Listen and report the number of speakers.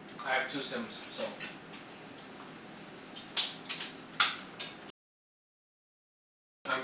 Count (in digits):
1